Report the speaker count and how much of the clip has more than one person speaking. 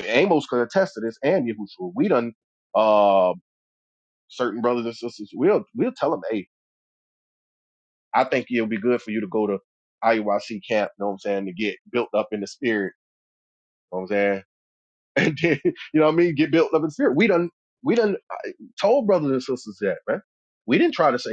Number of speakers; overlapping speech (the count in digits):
1, no overlap